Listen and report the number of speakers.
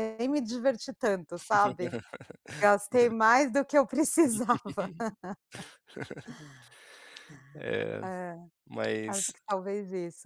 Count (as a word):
two